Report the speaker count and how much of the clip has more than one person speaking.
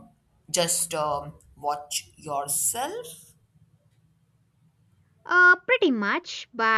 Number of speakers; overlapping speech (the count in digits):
2, no overlap